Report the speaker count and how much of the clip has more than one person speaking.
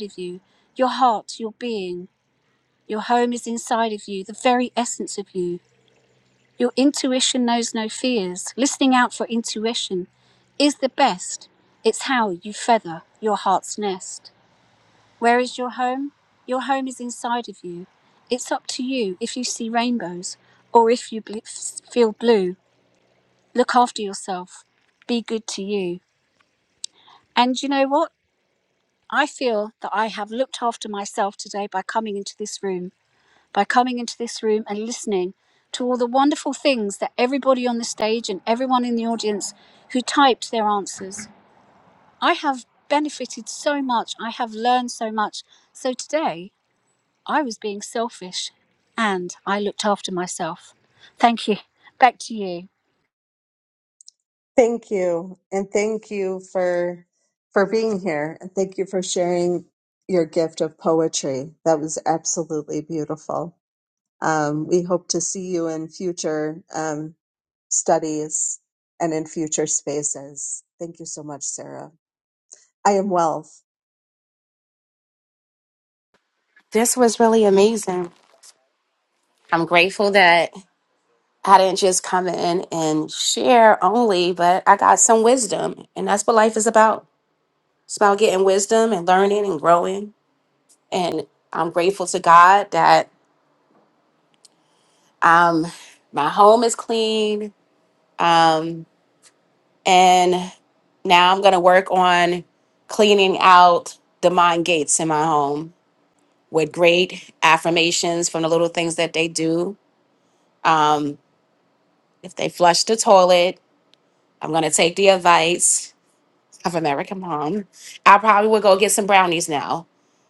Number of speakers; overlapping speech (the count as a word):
three, no overlap